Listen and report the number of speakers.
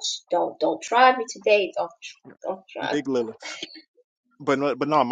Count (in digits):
2